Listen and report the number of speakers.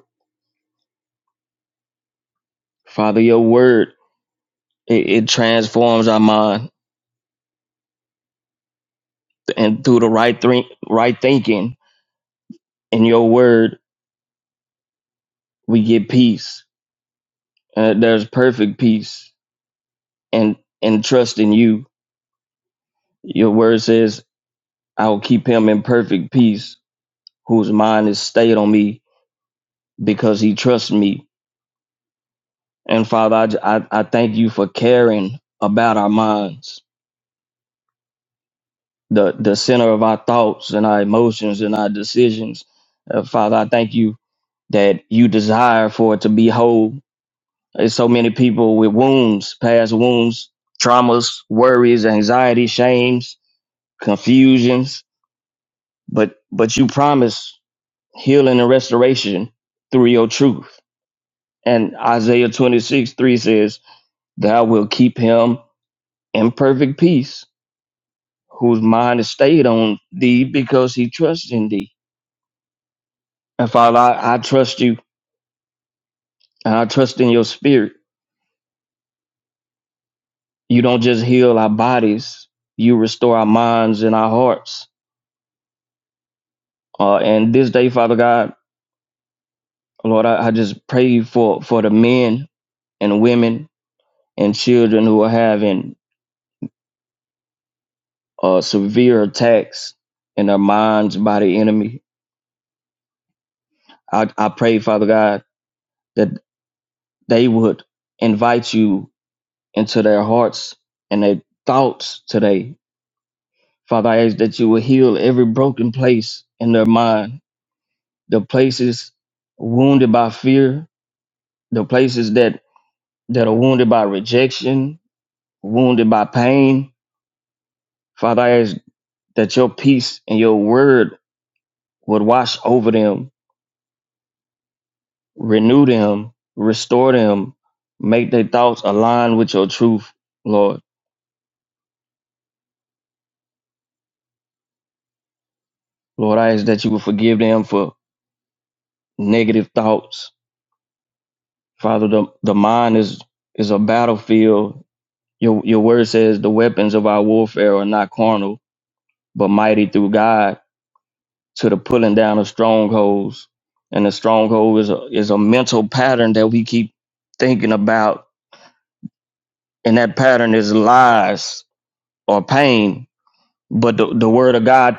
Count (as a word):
one